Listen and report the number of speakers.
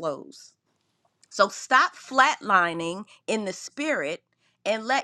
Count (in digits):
1